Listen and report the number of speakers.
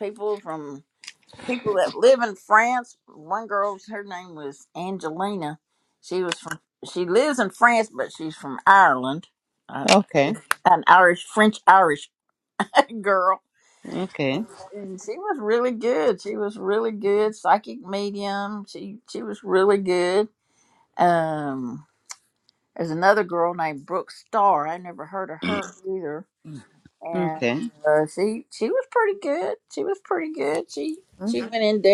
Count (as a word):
two